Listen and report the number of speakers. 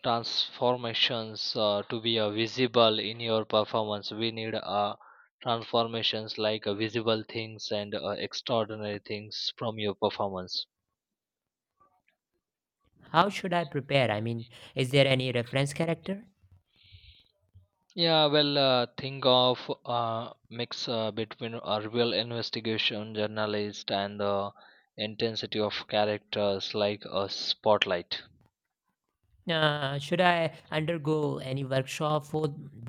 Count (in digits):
2